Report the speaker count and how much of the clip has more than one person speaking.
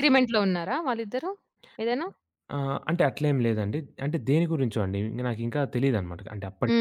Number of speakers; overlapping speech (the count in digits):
2, about 2%